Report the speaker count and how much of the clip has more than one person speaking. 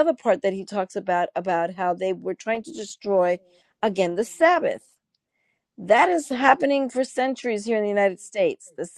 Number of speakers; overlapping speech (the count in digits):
1, no overlap